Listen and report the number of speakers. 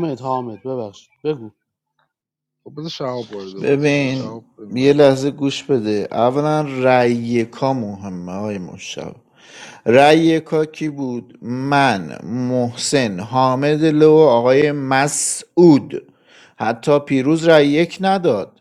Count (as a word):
three